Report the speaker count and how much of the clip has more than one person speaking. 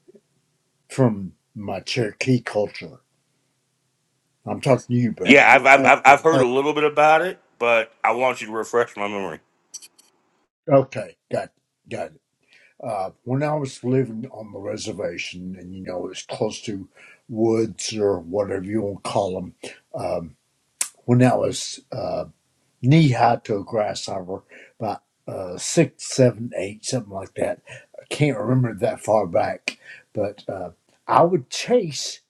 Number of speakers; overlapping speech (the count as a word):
two, about 2%